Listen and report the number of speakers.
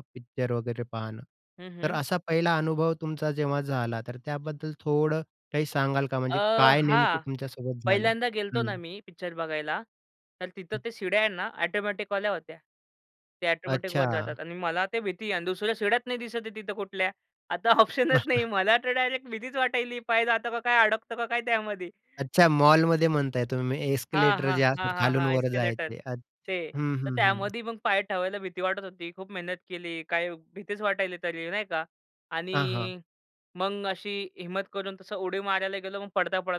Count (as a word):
two